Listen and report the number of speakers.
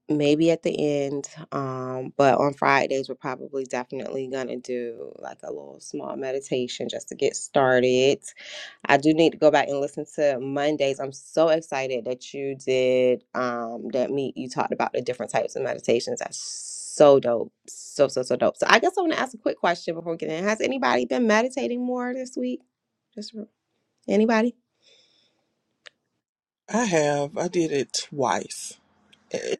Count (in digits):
2